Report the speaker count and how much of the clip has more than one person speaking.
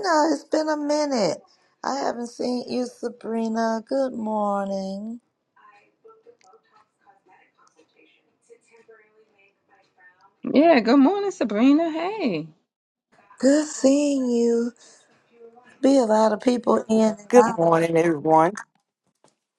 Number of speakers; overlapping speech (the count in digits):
3, about 2%